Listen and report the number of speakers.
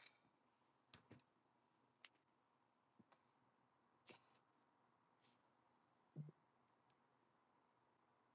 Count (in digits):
0